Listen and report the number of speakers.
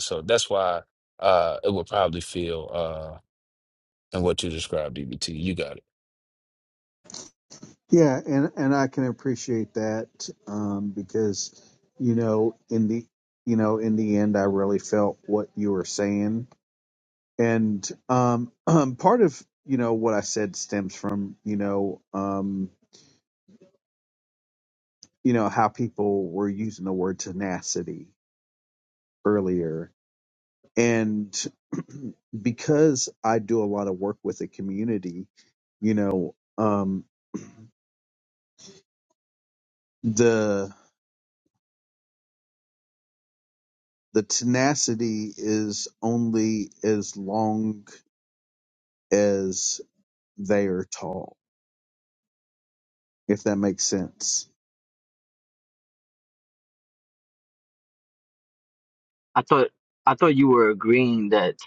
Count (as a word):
three